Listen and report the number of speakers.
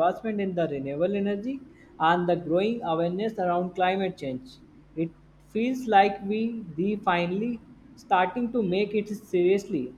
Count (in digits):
1